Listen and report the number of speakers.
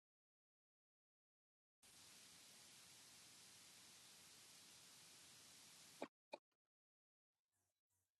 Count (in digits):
0